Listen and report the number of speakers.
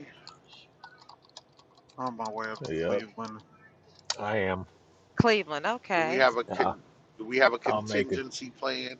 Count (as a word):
four